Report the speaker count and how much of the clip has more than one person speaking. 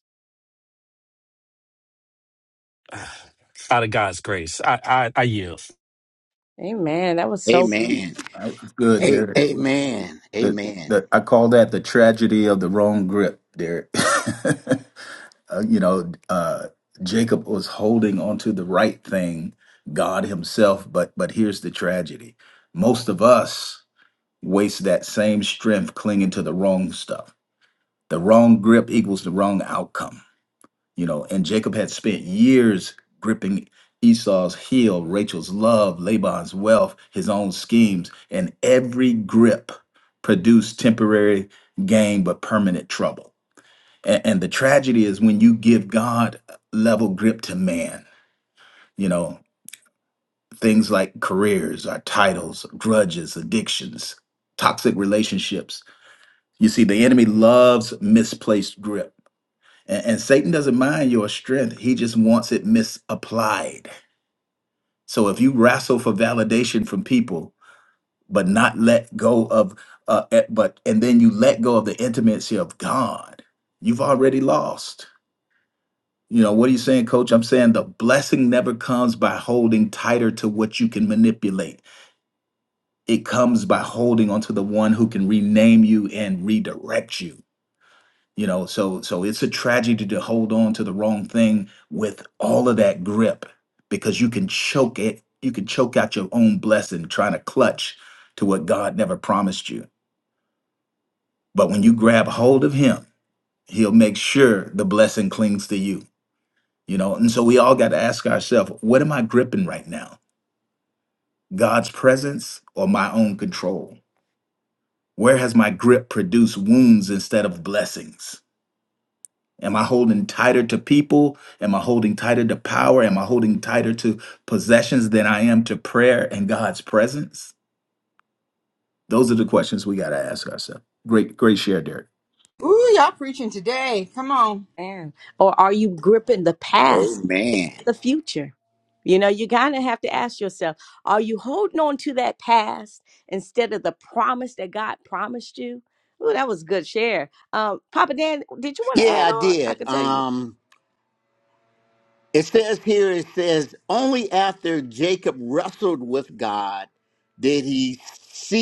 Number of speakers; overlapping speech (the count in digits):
5, about 2%